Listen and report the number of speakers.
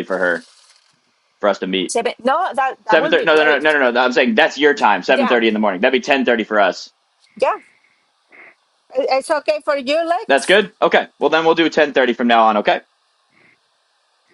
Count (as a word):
two